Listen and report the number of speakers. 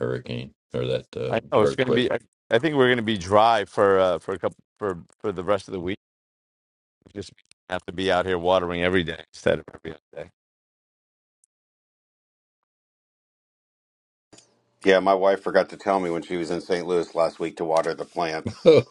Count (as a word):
three